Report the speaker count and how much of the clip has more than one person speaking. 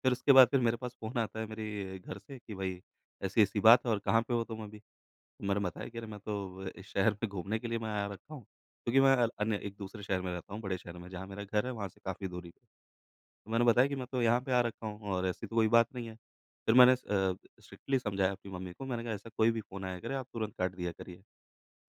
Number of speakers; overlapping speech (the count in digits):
1, no overlap